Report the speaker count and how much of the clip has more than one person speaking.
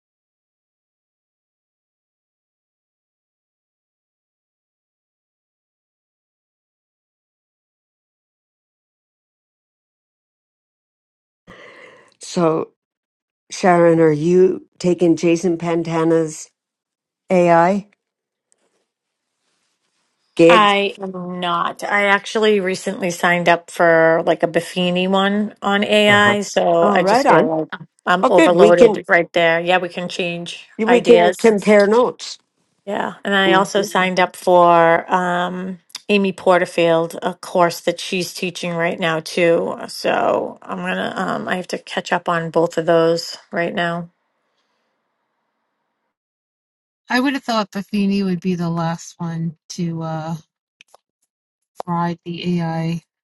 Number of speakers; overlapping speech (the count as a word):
three, about 5%